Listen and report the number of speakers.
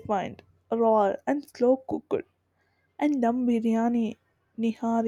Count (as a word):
one